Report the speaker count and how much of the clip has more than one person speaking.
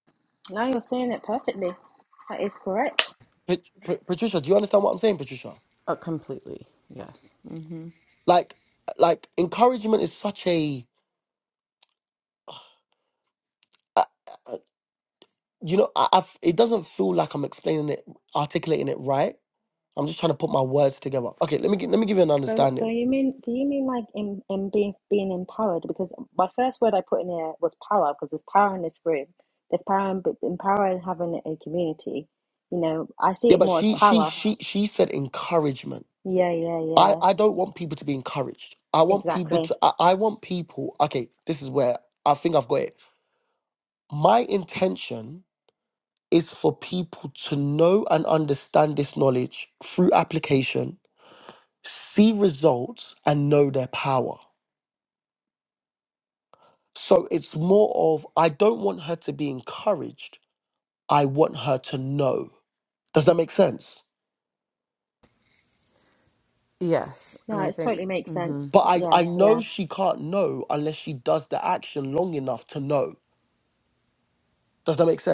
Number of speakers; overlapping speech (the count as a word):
three, about 6%